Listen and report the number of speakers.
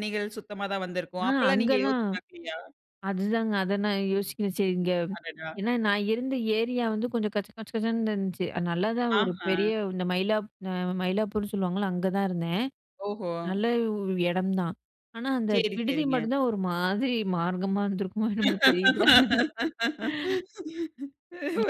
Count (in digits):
2